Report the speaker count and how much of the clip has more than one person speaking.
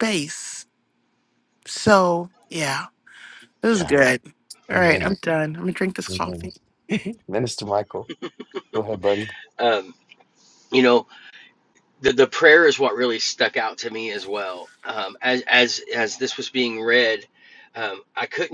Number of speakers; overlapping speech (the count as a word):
three, about 6%